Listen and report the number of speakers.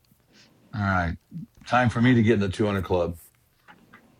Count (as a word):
one